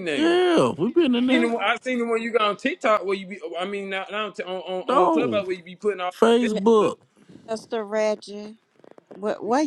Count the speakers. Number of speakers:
three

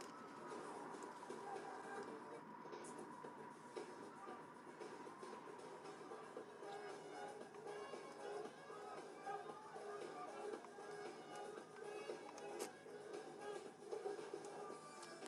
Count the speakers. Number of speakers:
zero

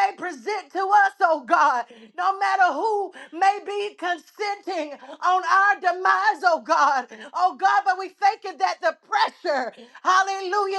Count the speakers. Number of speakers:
one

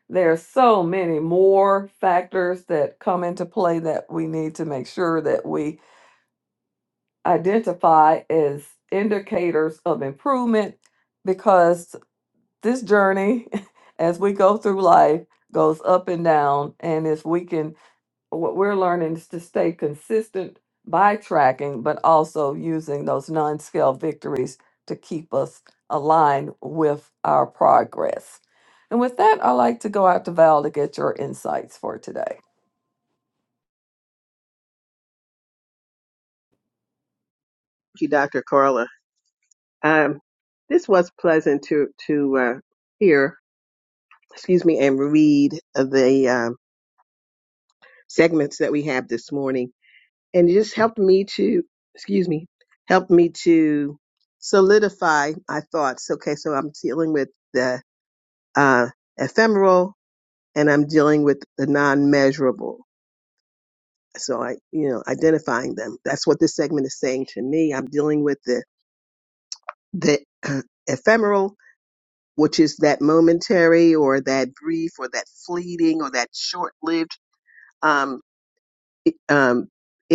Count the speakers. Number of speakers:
two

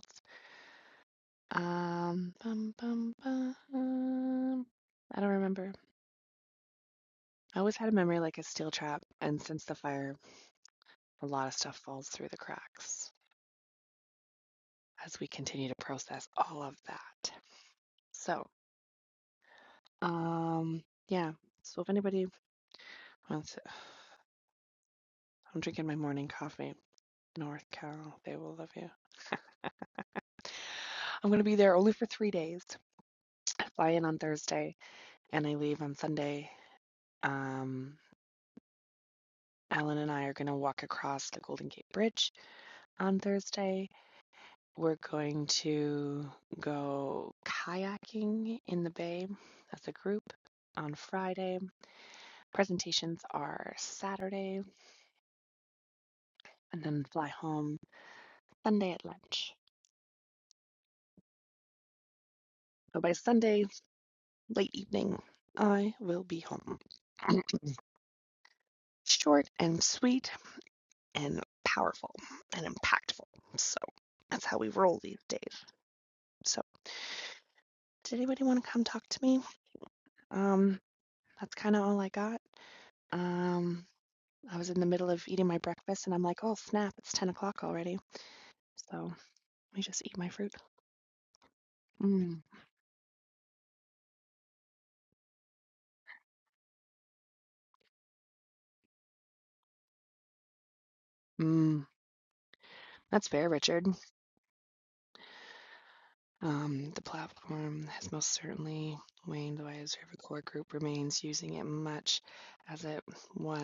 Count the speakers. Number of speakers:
one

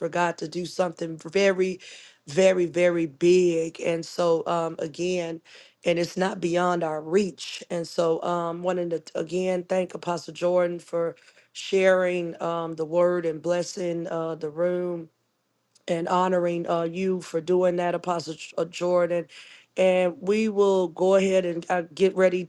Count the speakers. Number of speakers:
one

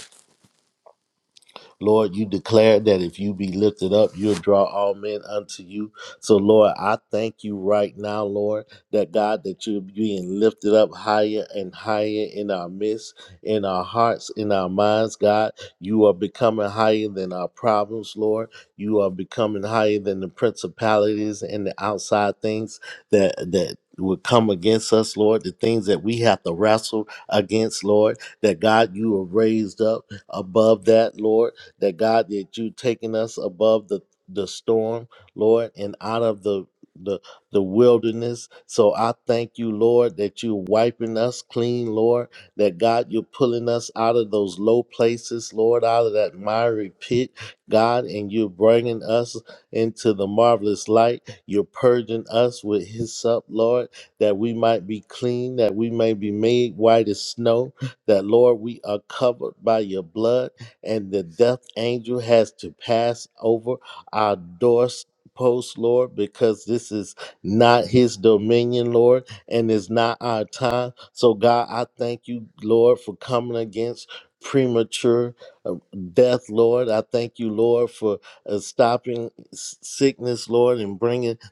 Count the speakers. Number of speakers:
one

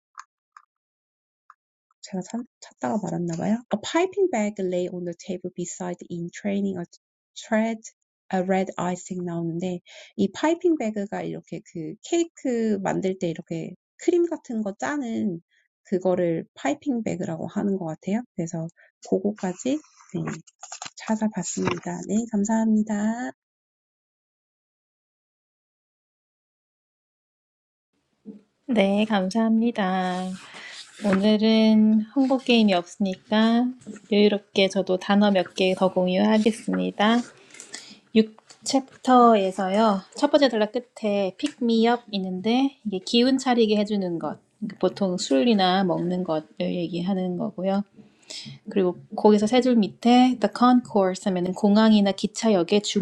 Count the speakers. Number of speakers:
two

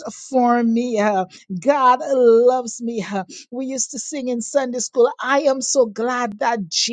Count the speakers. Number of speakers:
one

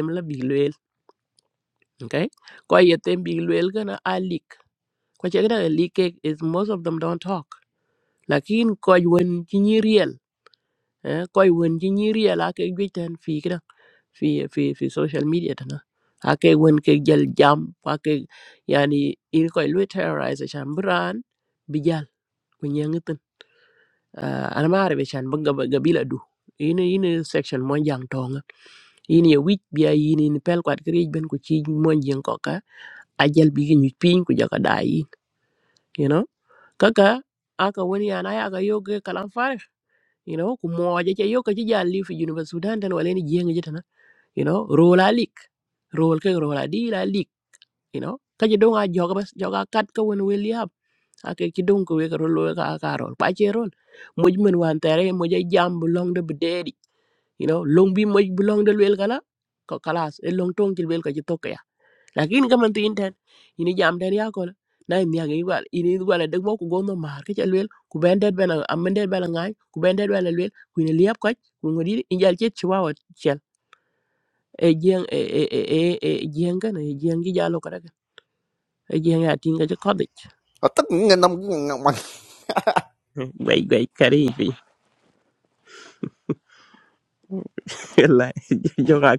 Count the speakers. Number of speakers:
two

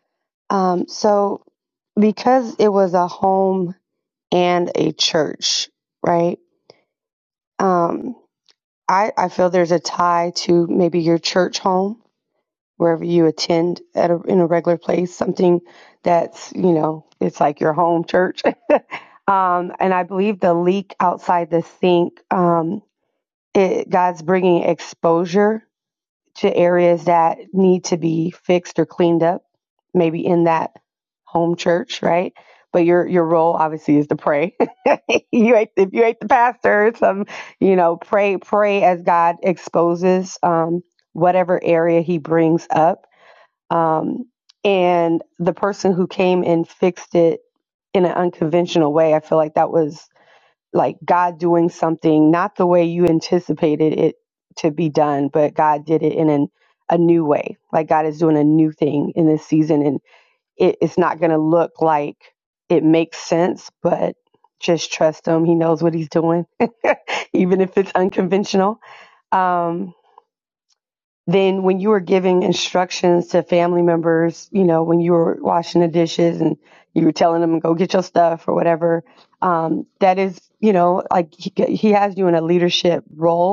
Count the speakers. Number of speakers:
one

